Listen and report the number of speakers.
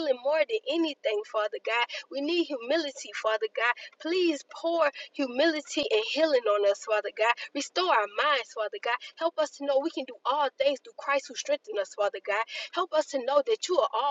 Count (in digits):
1